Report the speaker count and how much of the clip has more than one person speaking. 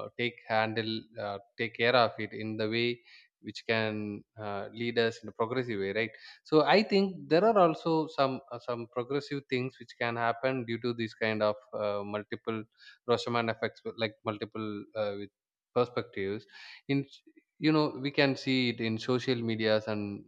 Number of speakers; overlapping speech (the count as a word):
one, no overlap